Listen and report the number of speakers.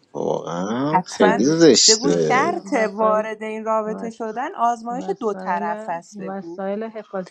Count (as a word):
three